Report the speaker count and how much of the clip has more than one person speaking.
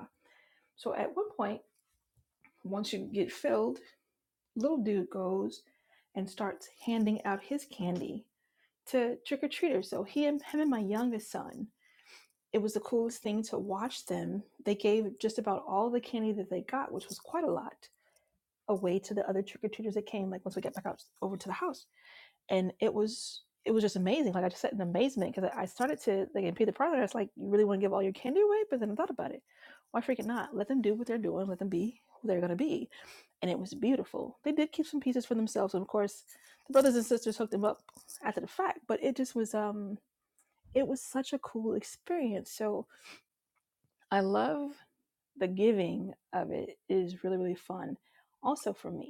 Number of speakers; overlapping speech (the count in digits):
1, no overlap